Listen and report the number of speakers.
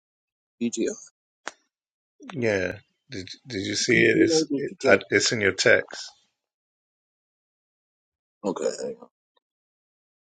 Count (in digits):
2